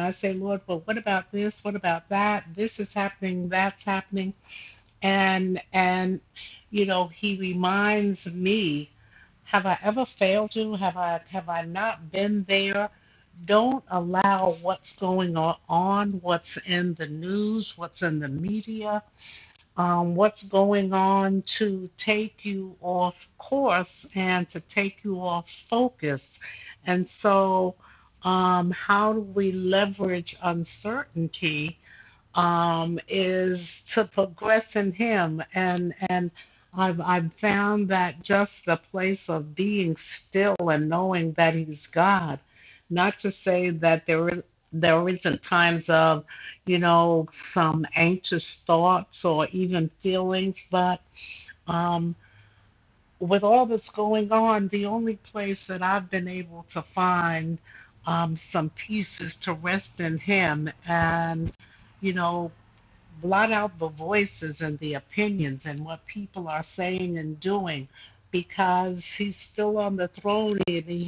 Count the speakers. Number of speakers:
1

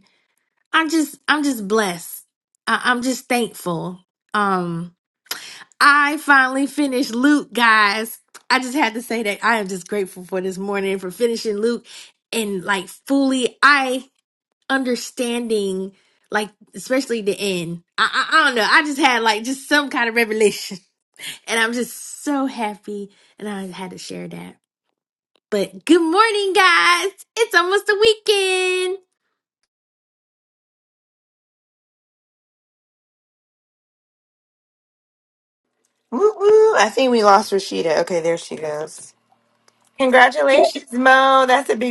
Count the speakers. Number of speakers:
2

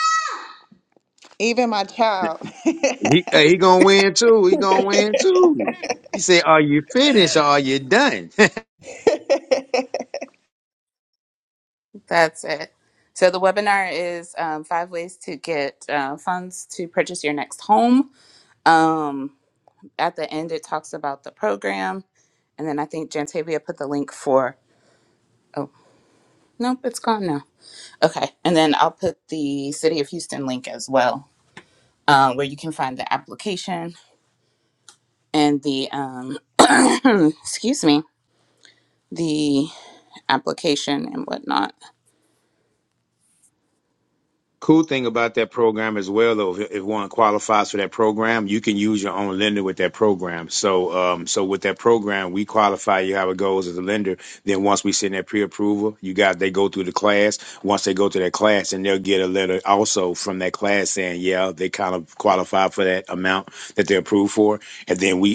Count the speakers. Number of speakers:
3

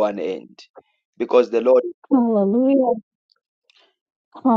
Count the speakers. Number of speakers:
2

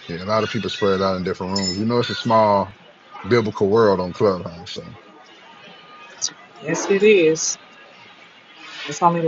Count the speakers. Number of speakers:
2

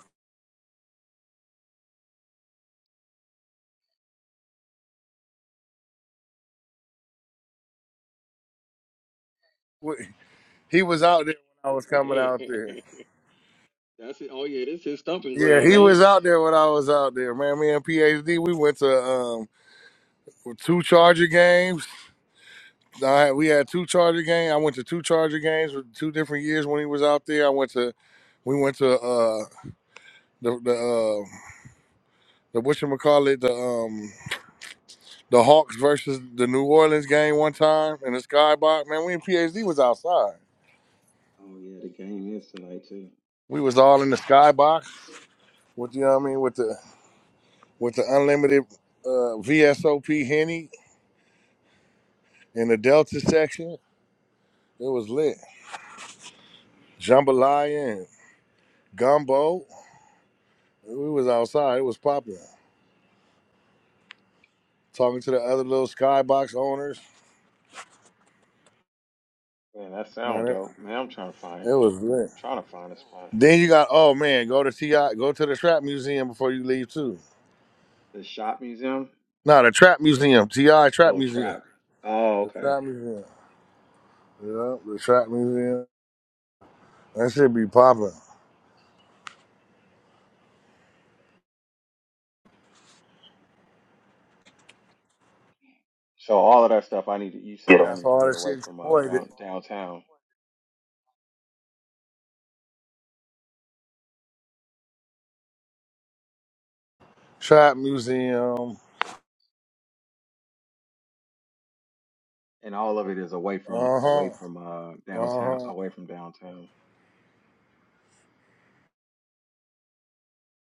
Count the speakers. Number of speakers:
2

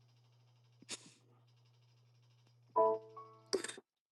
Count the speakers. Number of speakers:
0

